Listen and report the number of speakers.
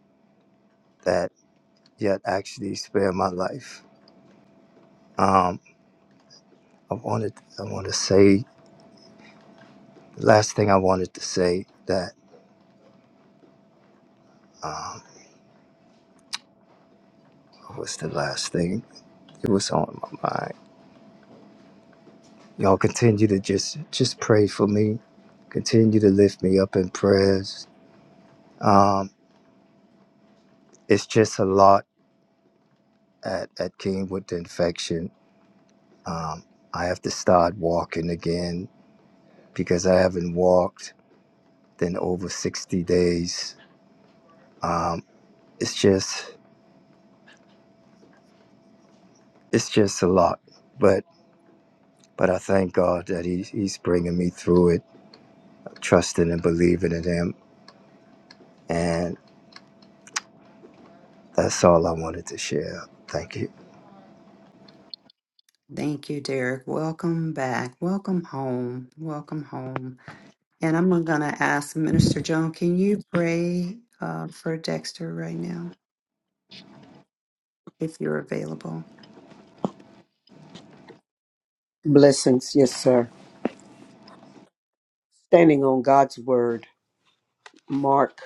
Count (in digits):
3